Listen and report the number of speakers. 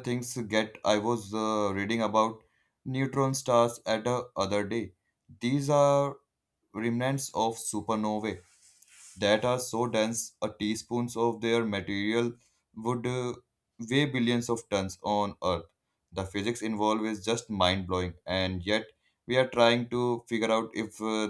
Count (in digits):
1